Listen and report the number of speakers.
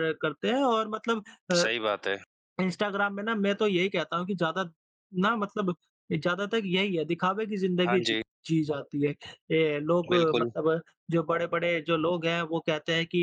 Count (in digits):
2